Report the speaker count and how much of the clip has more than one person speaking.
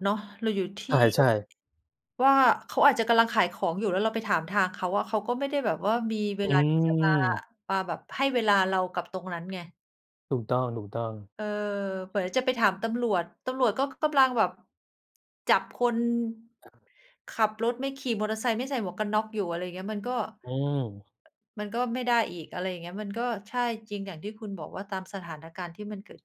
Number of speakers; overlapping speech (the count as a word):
two, under 1%